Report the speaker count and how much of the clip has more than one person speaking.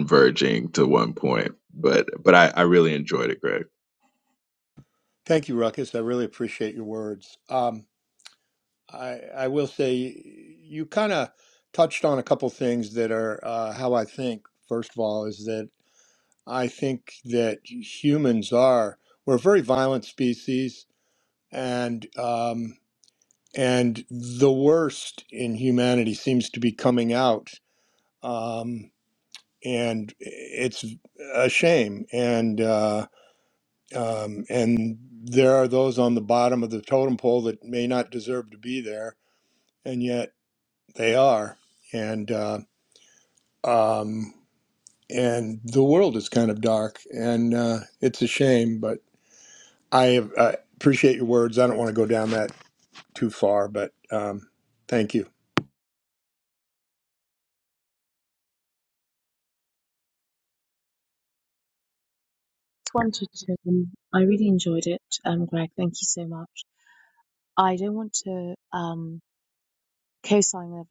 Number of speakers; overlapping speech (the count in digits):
3, no overlap